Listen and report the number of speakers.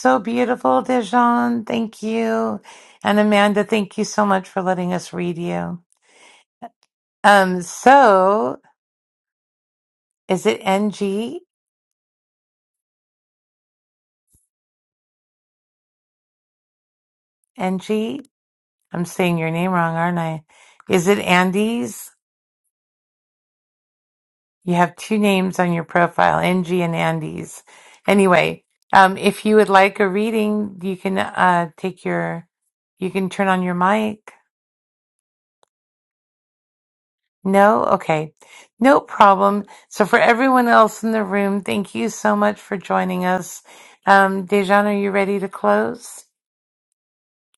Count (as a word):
one